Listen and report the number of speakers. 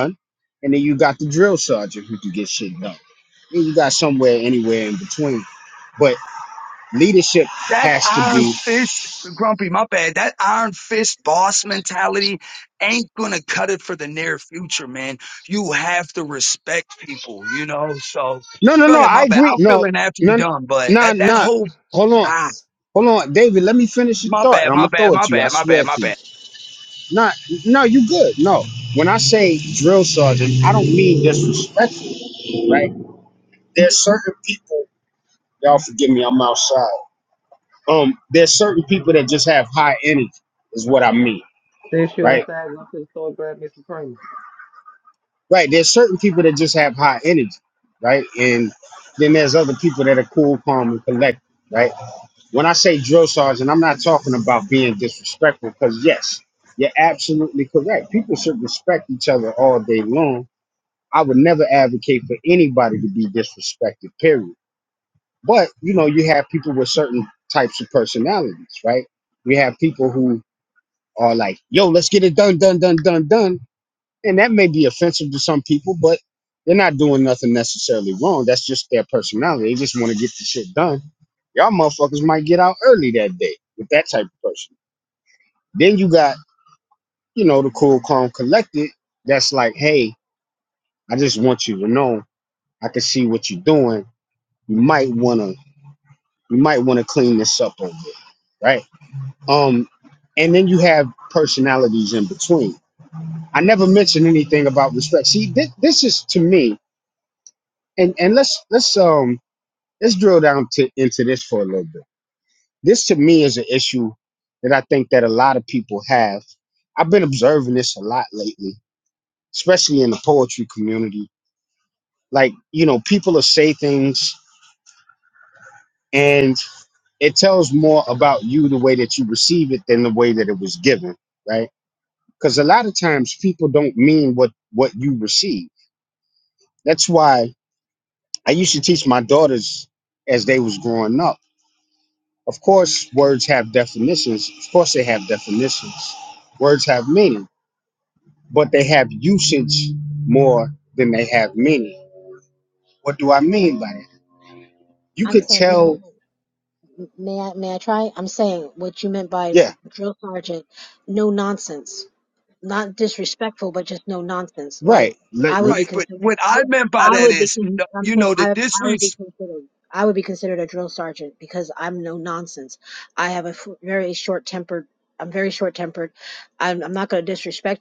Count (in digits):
4